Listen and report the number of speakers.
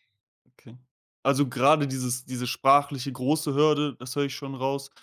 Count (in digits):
1